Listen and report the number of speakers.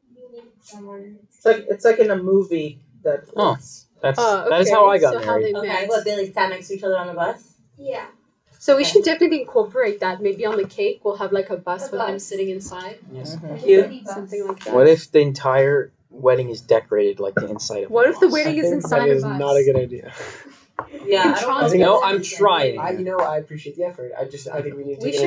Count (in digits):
6